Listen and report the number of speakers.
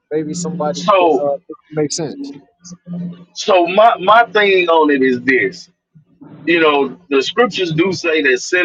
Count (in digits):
2